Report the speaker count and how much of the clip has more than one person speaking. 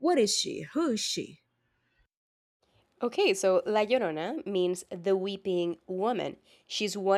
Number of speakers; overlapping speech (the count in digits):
2, no overlap